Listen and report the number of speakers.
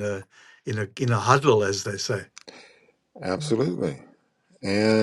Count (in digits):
2